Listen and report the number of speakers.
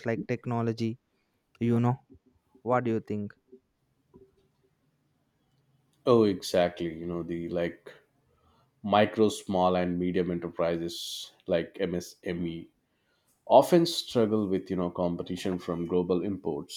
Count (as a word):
two